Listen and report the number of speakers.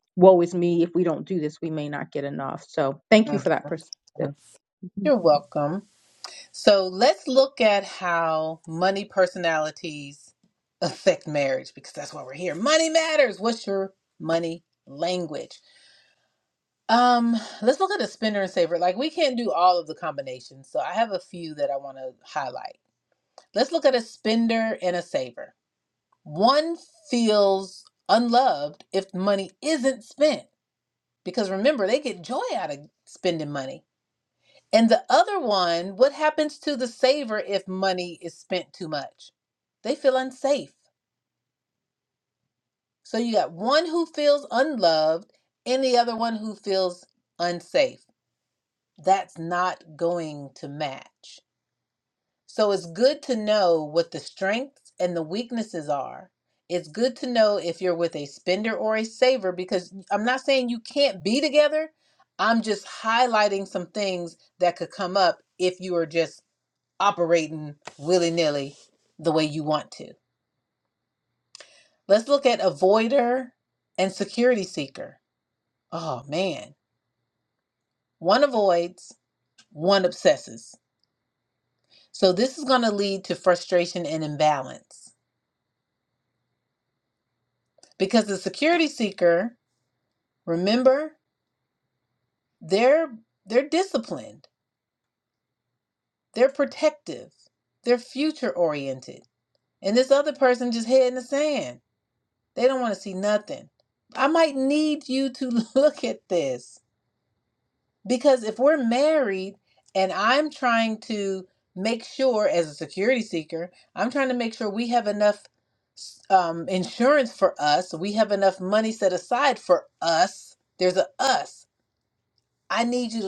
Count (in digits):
2